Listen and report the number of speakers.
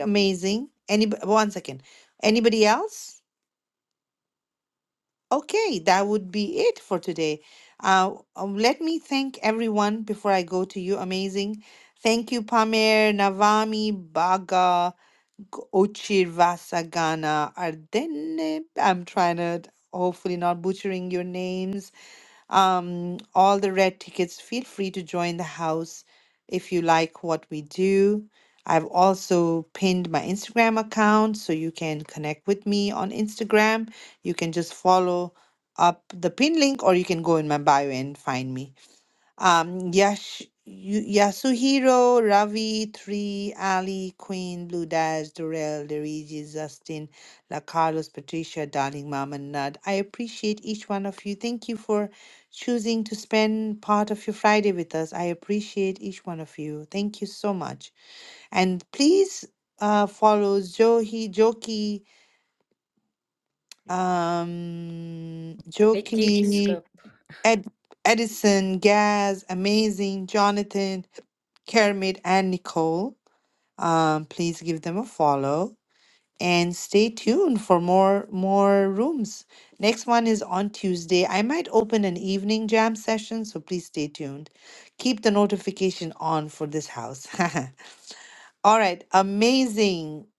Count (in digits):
1